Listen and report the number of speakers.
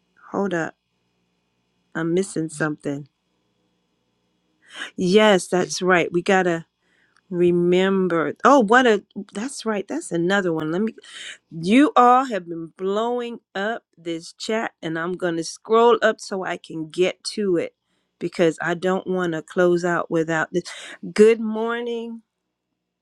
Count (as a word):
one